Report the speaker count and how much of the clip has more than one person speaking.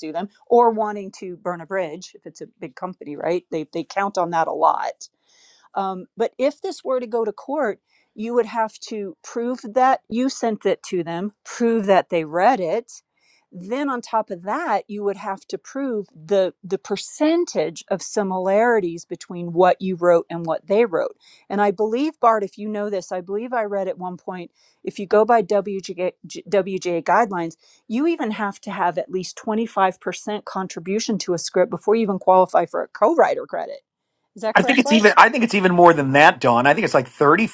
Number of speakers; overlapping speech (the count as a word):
two, about 1%